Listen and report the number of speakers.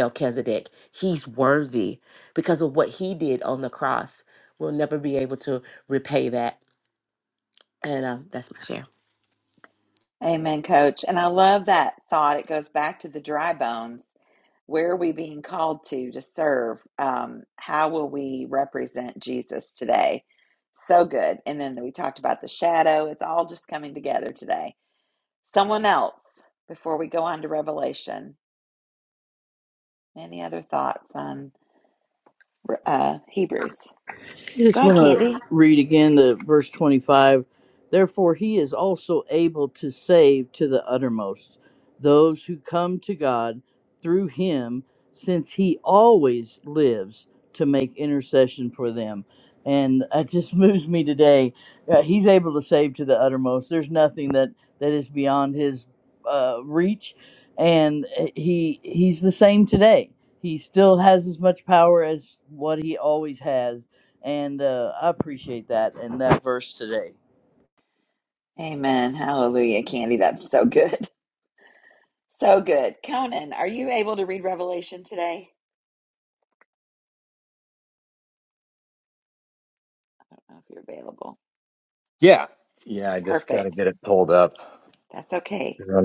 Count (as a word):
four